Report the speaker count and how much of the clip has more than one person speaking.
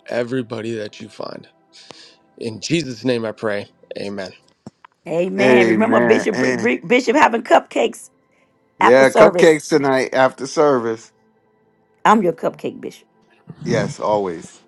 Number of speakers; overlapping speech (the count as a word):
three, about 14%